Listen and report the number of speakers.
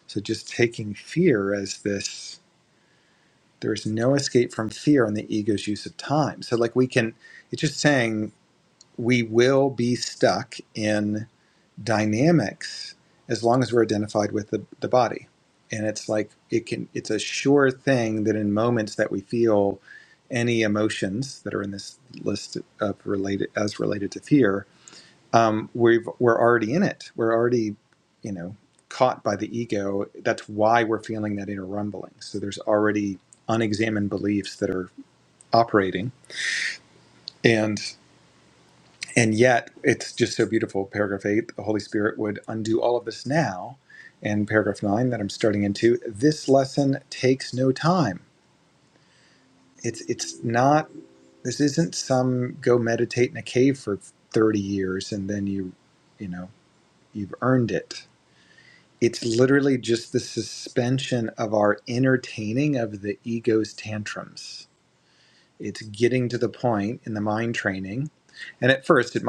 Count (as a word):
one